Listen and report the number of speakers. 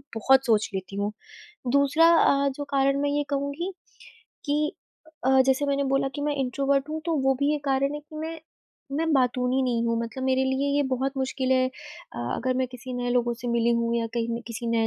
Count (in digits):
1